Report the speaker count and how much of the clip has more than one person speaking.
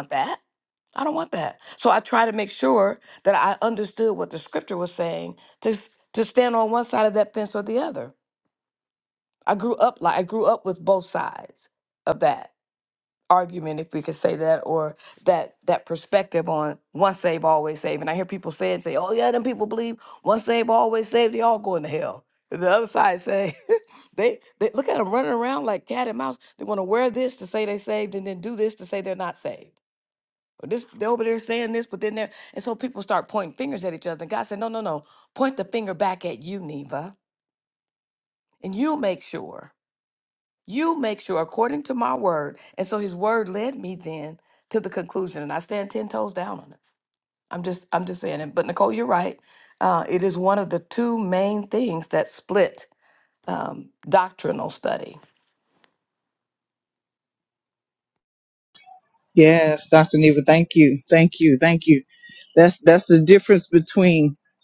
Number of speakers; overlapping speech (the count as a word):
two, no overlap